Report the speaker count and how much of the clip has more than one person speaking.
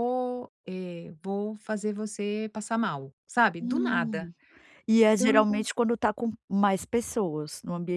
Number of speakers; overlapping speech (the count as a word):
two, about 14%